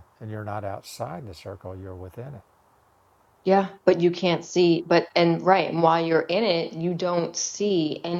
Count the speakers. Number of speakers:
2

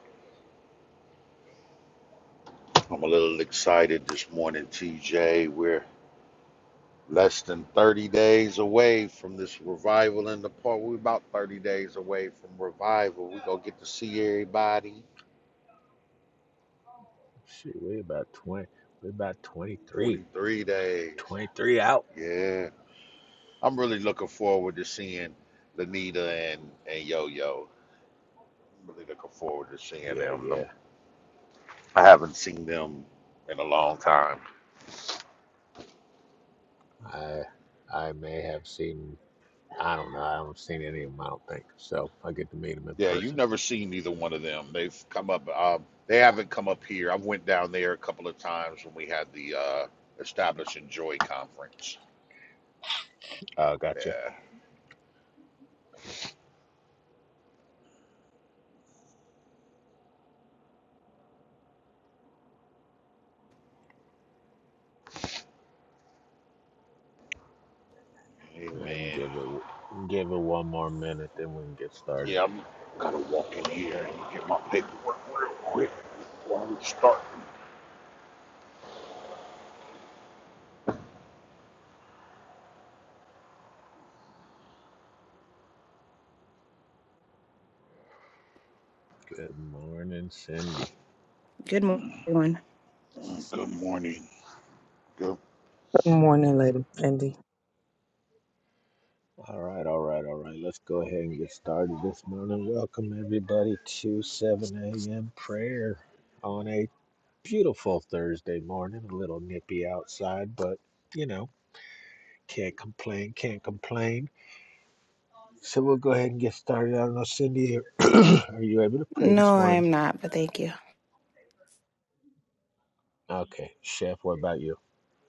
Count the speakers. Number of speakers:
4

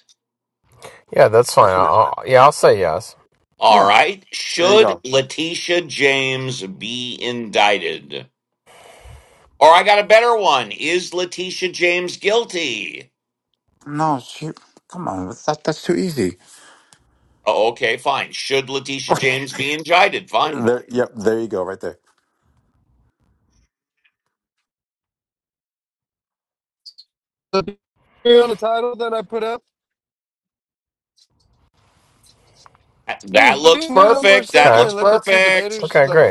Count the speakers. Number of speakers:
4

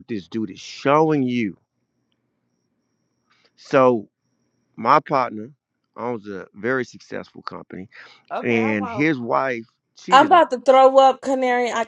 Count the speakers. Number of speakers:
2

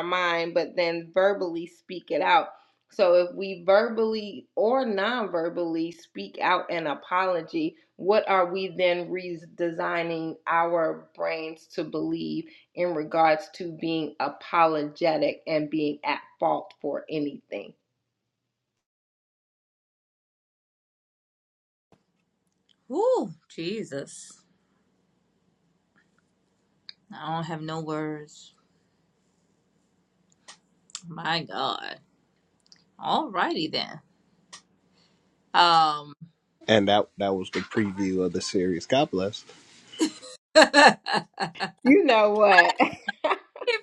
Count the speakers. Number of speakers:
3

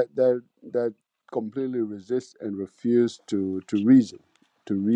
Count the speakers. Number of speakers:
1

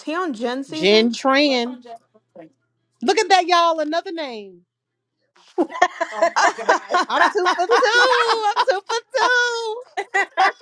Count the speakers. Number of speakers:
3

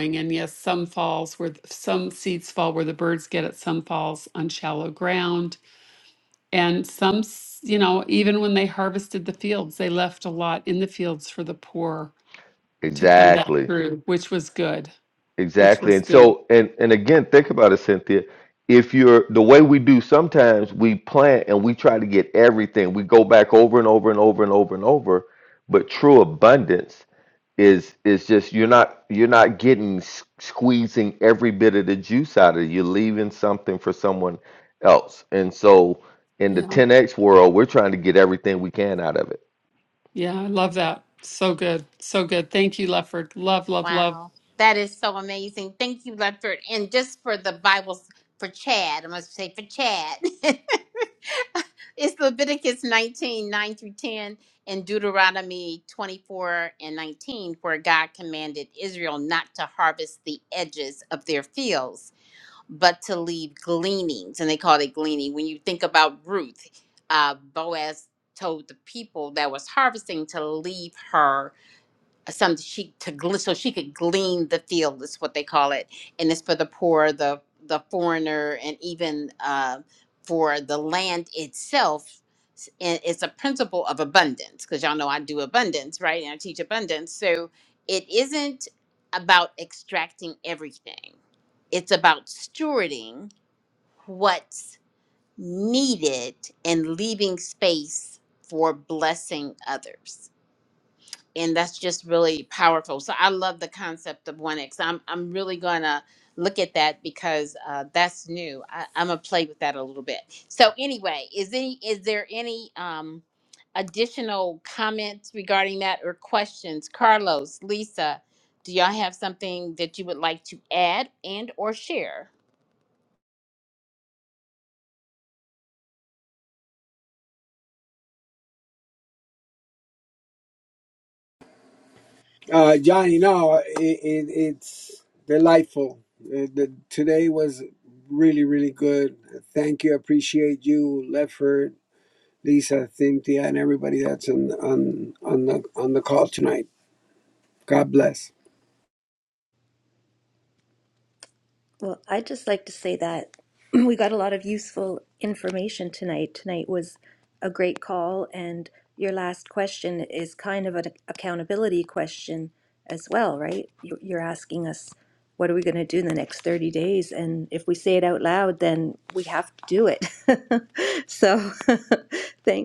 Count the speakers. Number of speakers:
5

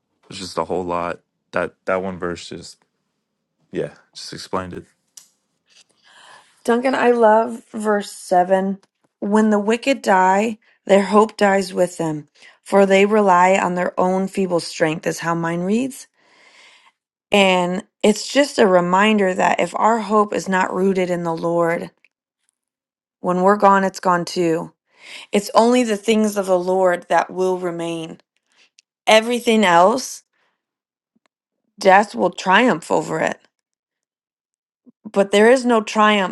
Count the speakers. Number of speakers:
2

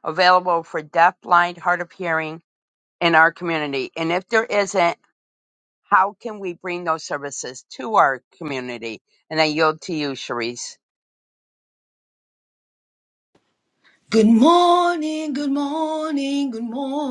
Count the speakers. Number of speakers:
2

